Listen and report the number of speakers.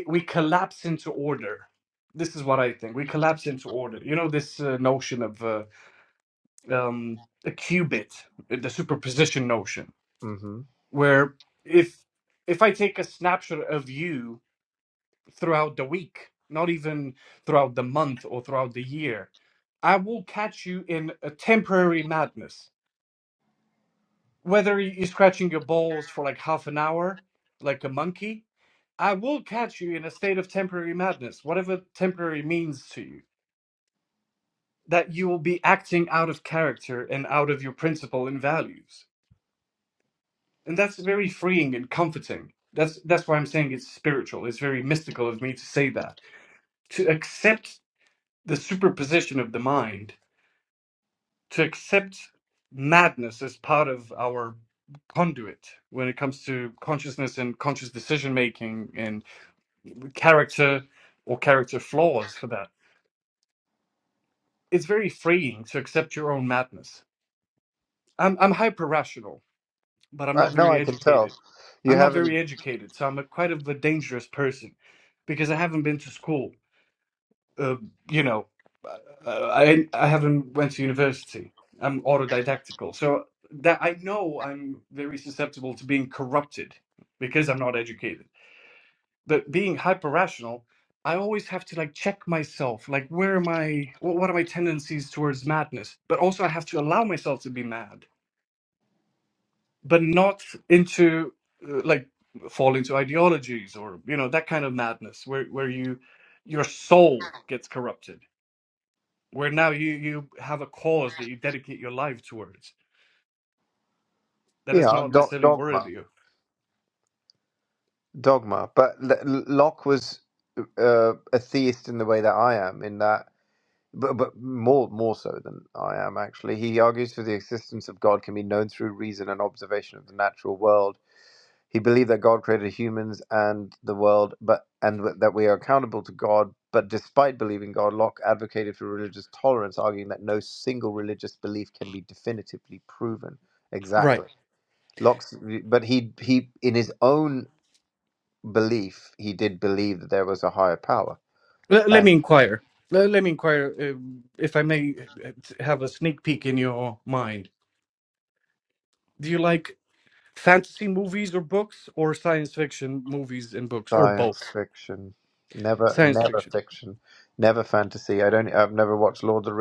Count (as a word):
two